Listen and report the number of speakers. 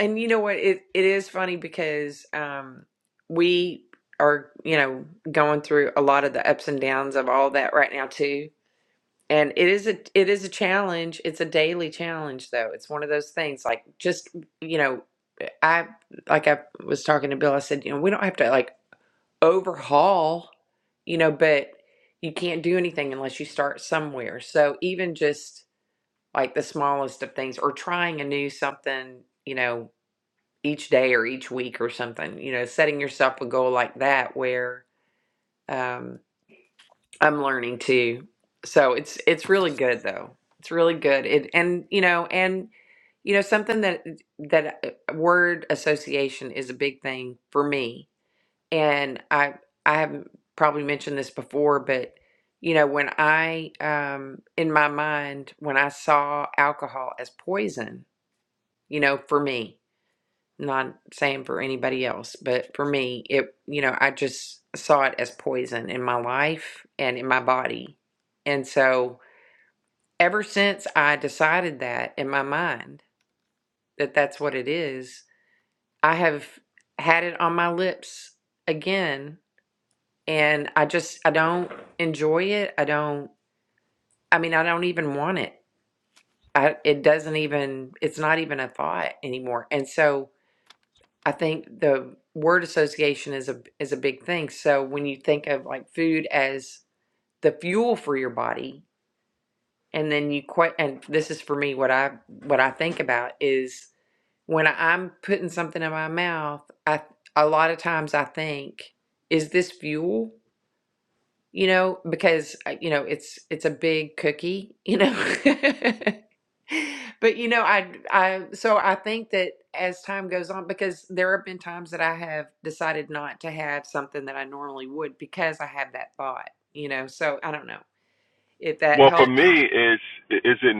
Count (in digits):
2